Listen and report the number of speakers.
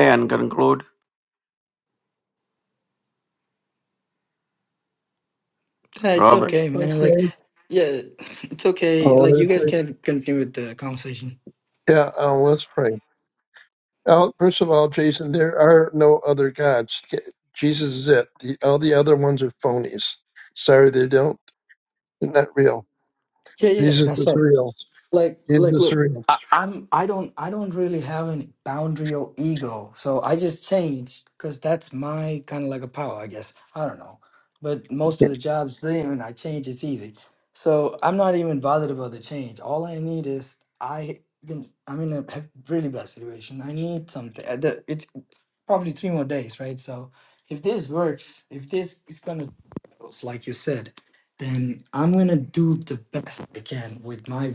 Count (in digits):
3